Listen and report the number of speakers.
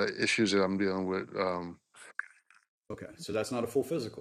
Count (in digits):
2